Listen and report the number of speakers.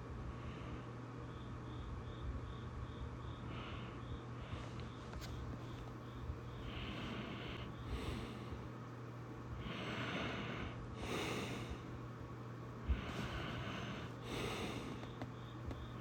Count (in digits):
0